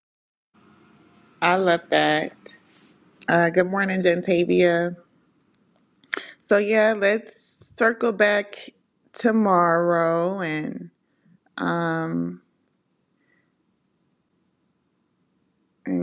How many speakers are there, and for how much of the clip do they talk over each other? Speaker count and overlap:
1, no overlap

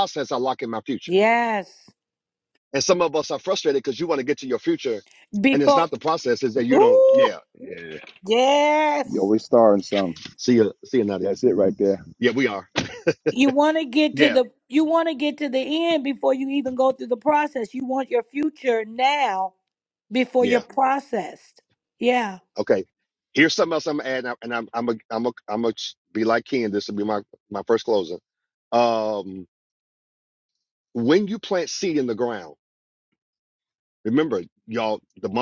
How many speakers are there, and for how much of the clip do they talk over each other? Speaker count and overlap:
3, about 5%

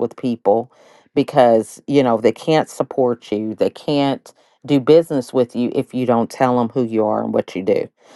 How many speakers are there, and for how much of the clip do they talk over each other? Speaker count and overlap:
1, no overlap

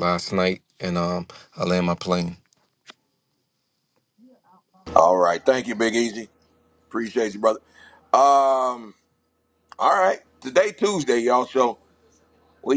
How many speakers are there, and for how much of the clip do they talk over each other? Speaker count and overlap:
2, no overlap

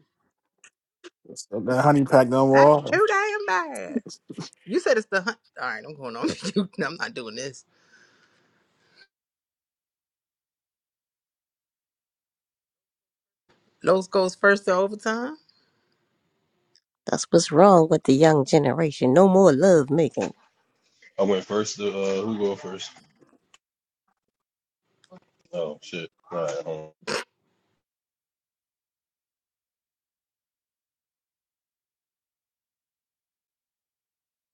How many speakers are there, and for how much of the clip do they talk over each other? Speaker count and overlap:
4, about 1%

